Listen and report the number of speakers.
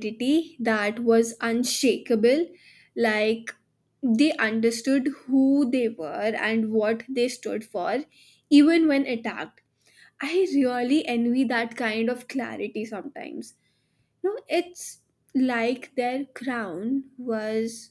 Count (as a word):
one